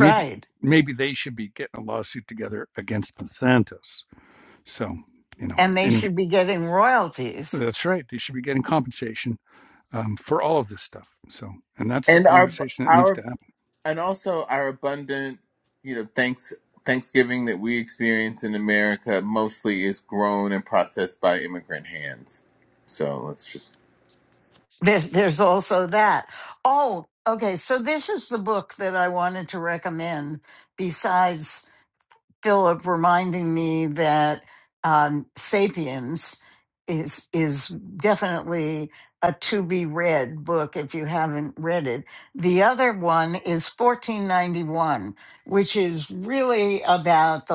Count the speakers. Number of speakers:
3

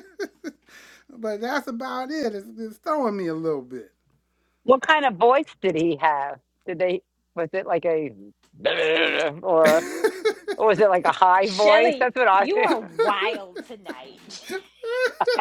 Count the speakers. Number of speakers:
3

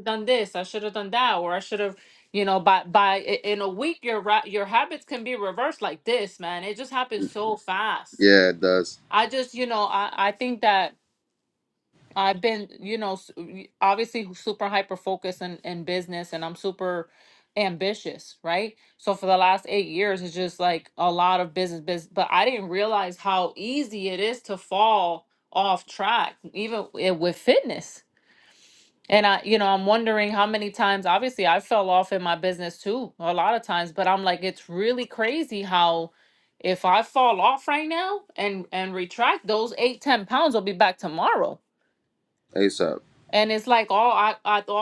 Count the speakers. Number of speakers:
2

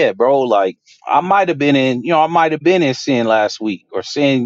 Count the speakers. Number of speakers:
1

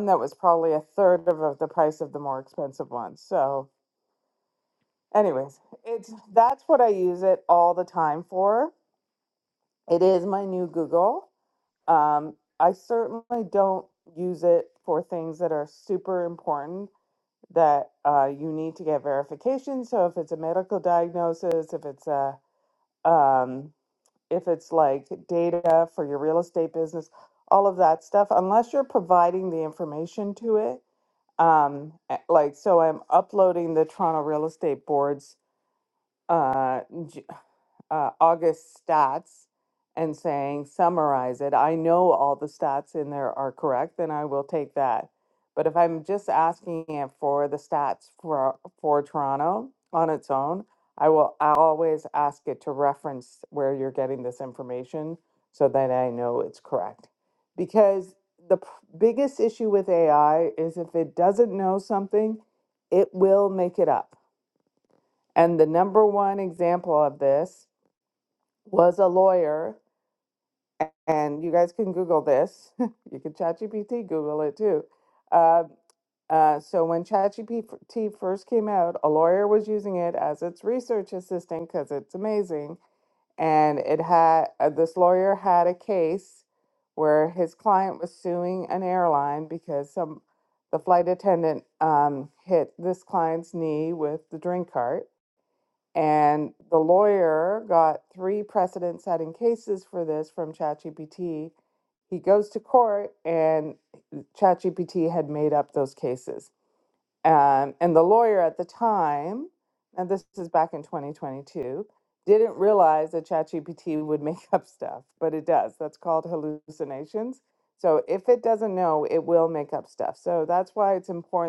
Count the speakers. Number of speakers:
1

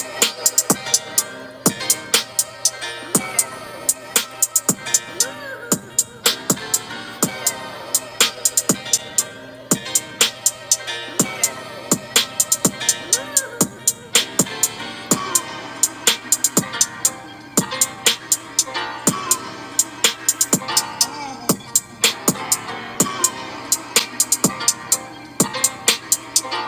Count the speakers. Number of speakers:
0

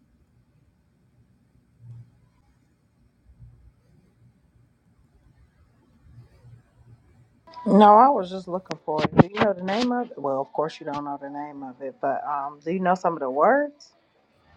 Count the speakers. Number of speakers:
1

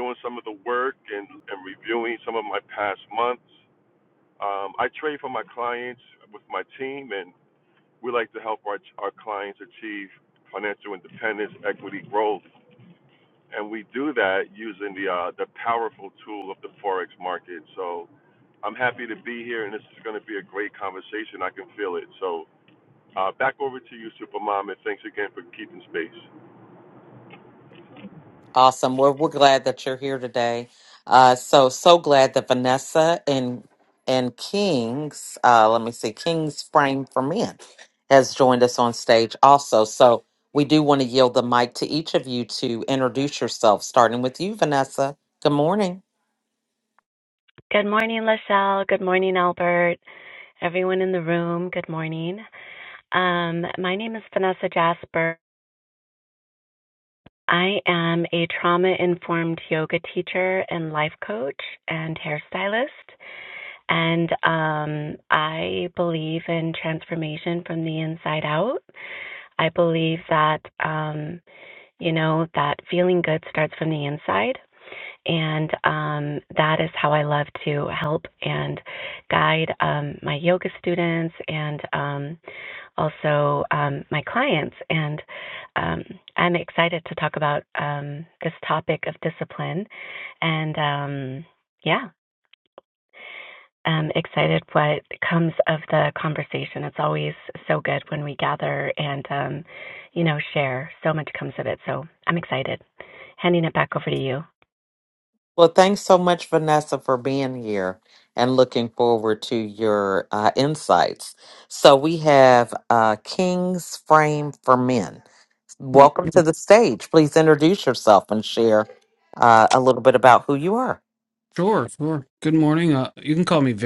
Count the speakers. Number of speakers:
4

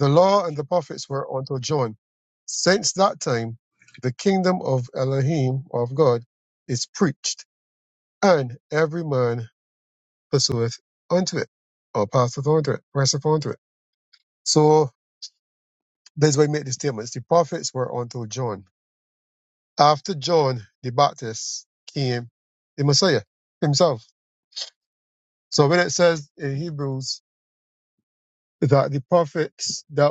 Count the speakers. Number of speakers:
1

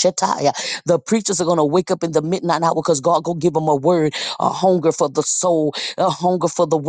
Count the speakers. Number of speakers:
1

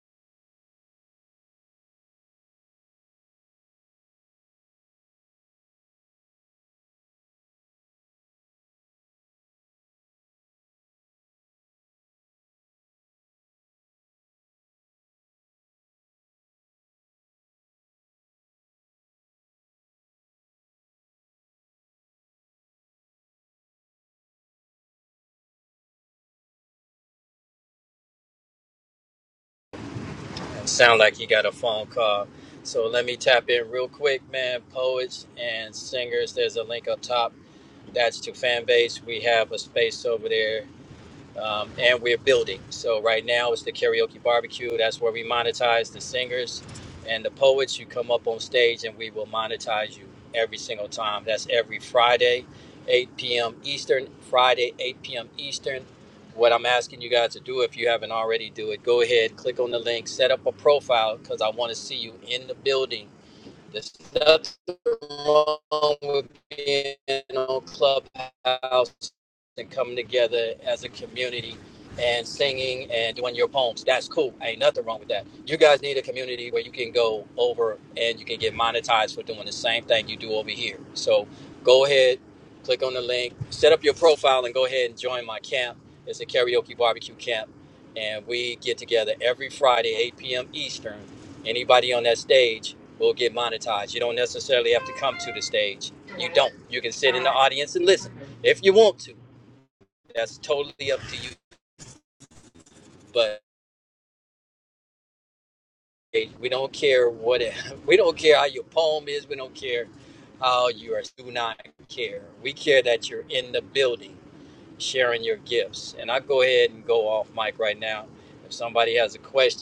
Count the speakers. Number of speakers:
1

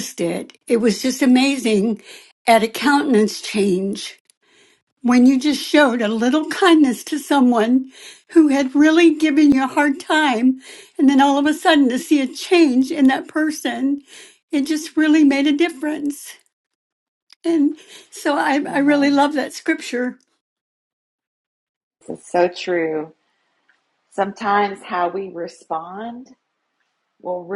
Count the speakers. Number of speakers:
2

